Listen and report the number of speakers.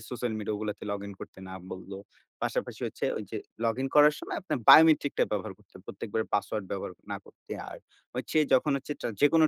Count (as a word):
one